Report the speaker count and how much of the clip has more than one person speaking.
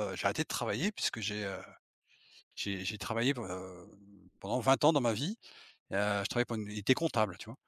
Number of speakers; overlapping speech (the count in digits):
1, no overlap